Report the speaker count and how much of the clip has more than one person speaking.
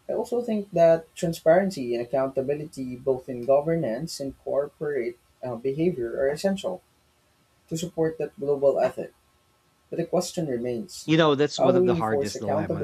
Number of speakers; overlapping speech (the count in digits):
2, about 10%